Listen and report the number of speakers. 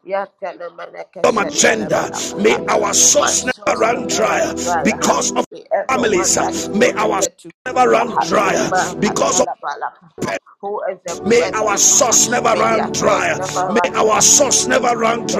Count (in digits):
2